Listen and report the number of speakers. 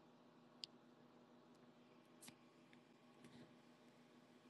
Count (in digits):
0